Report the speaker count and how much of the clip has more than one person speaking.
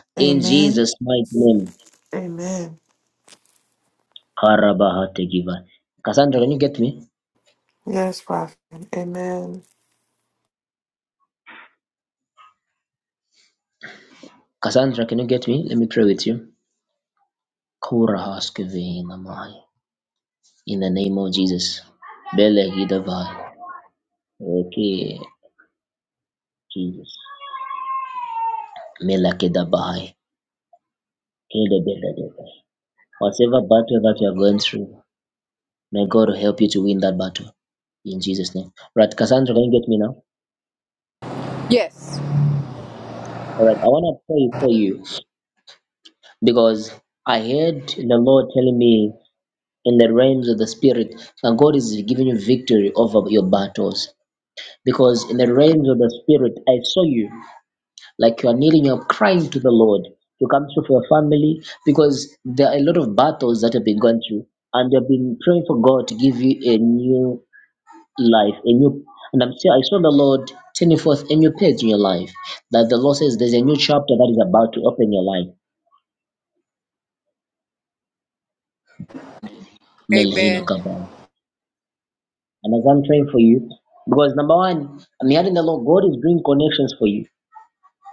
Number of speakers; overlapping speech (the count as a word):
three, about 1%